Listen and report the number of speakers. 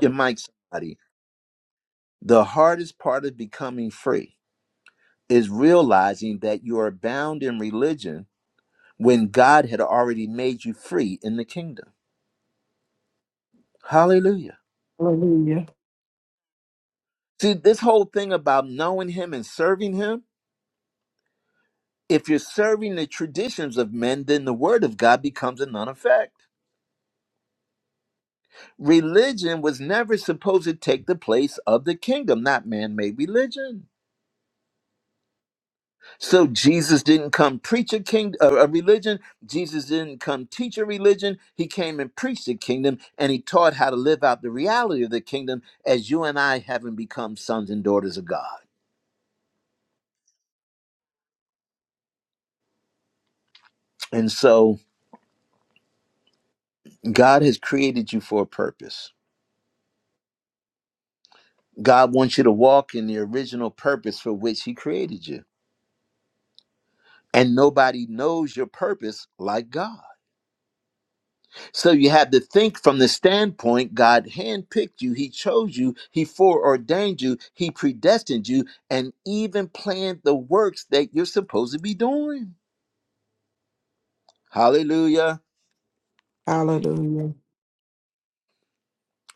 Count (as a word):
two